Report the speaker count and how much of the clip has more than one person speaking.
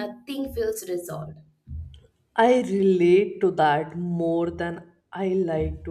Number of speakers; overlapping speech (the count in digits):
2, no overlap